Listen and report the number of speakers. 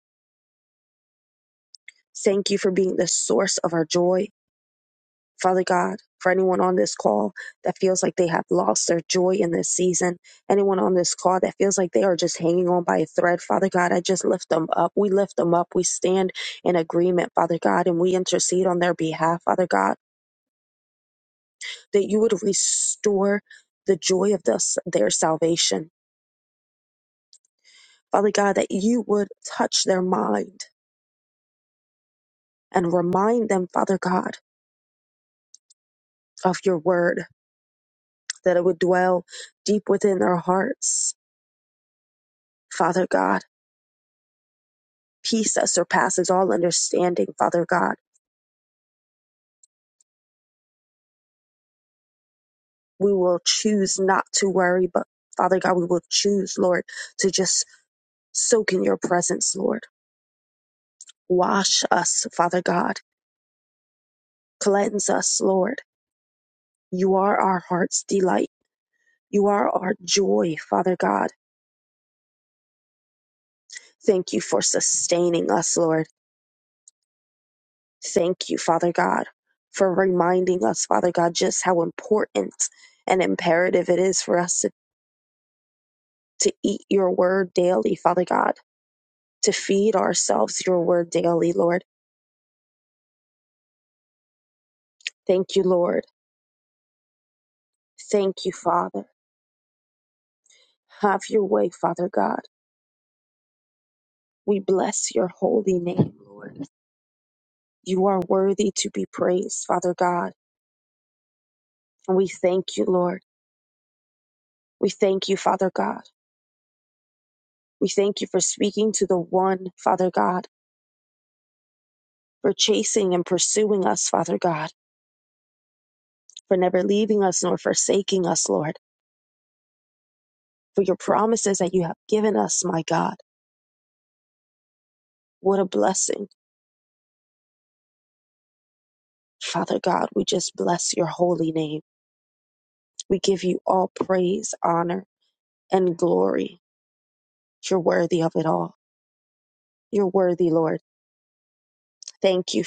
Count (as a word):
one